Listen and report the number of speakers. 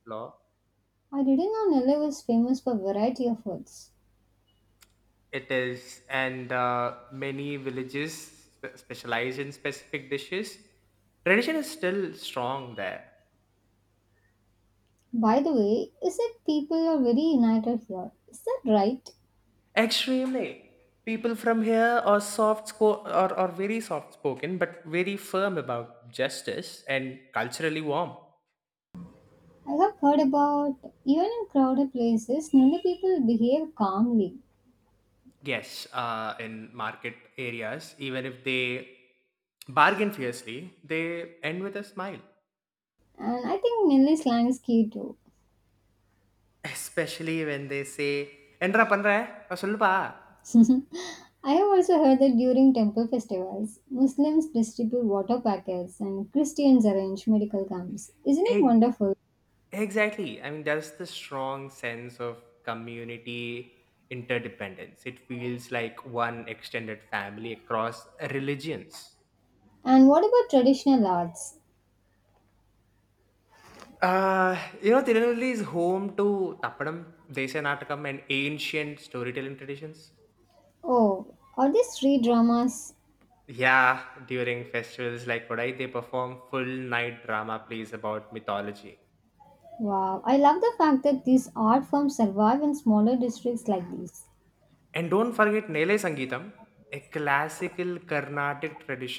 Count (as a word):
two